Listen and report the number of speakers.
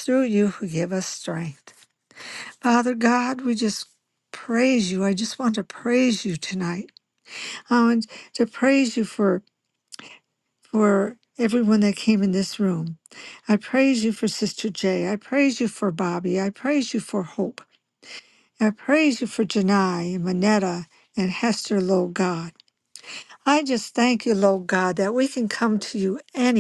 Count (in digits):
1